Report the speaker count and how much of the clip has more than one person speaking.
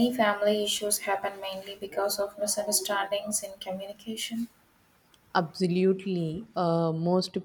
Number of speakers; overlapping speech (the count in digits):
2, no overlap